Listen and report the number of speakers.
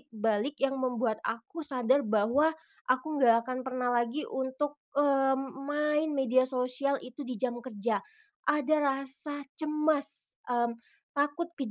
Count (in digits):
1